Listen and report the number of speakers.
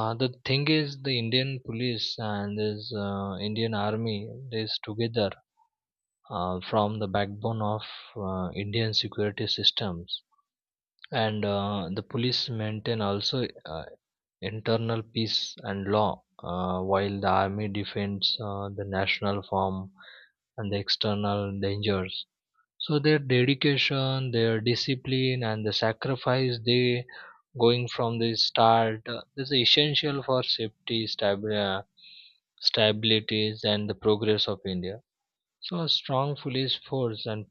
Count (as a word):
one